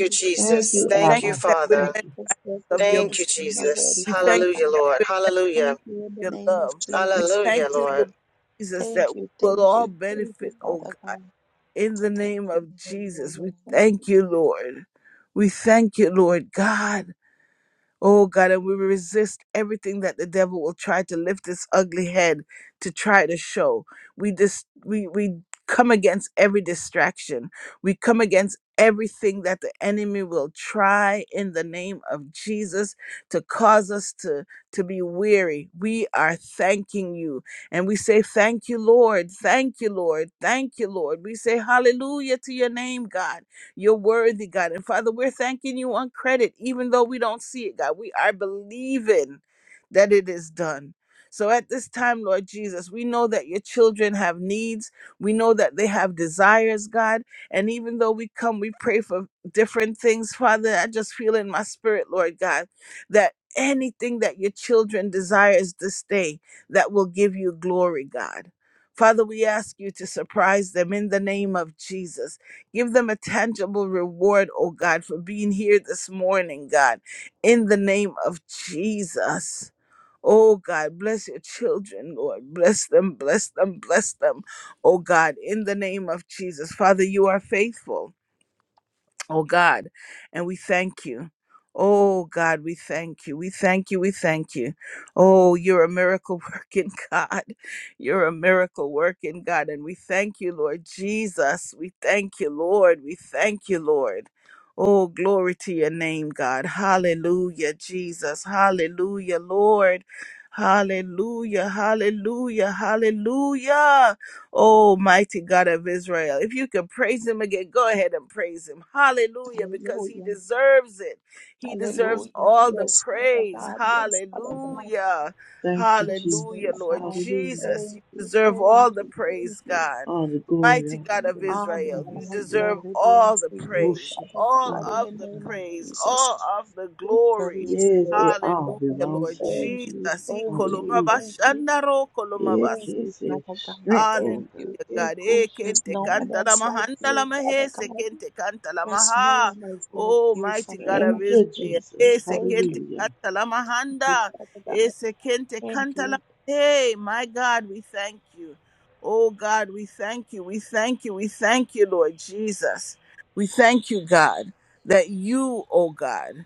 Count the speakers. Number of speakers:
4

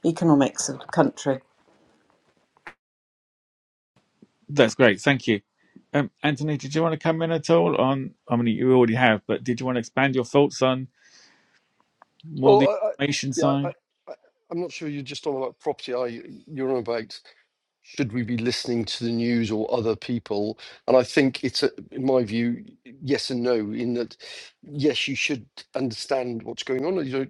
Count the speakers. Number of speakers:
3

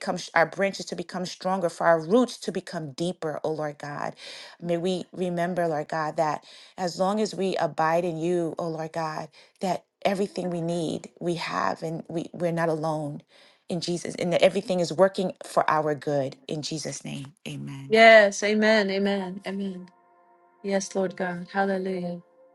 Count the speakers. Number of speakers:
2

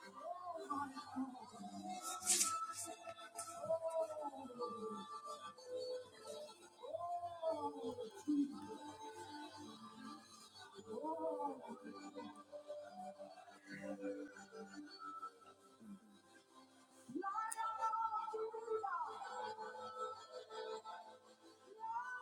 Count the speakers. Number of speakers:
0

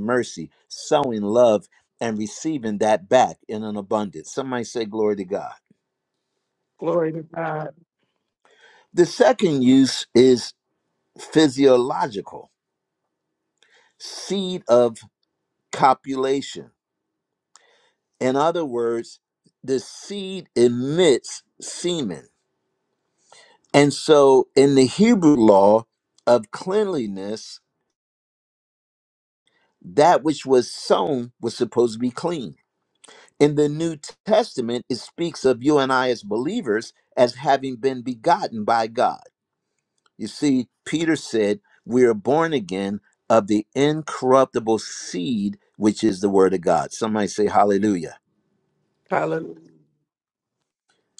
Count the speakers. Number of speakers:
2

